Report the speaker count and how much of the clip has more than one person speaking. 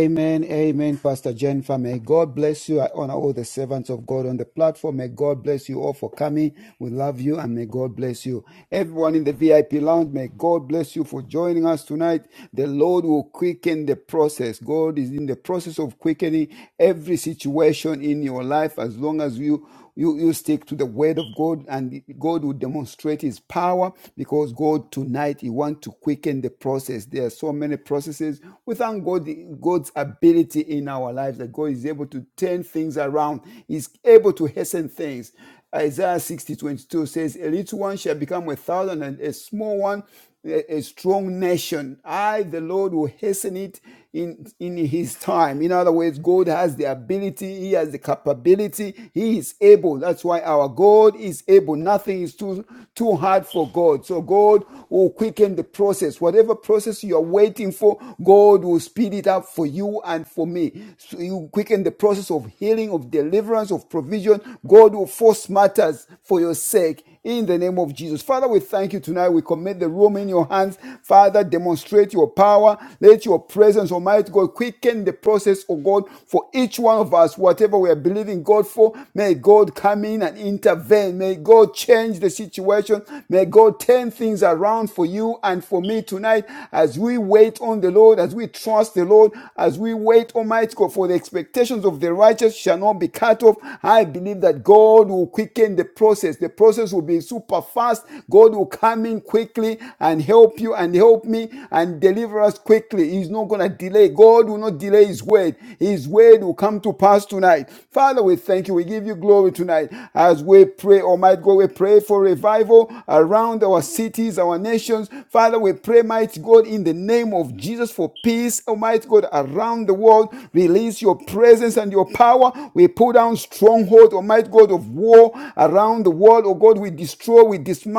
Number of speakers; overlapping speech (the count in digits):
1, no overlap